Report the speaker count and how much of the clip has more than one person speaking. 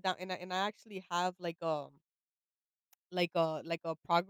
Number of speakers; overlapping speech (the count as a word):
one, no overlap